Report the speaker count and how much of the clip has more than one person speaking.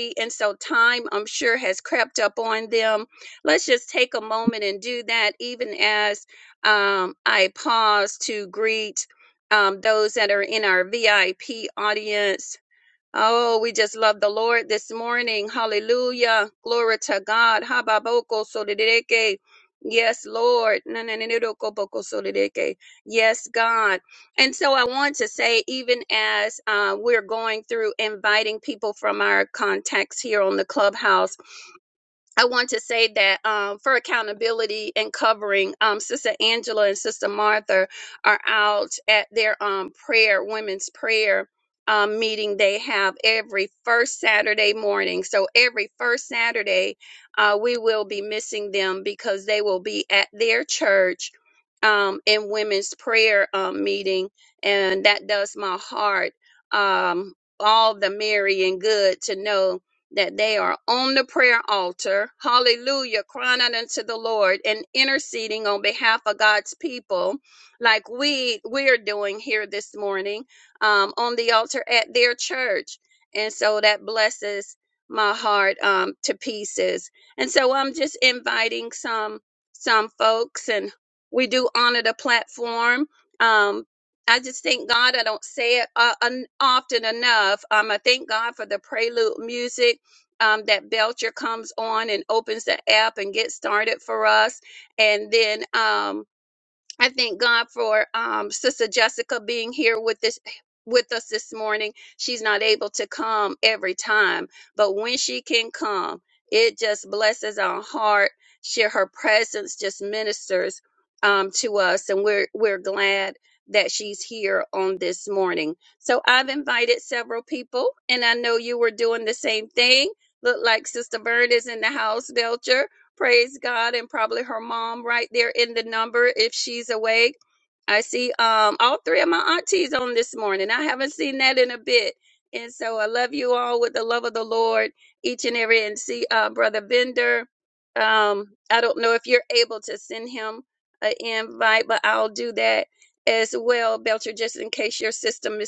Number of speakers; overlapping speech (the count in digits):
1, no overlap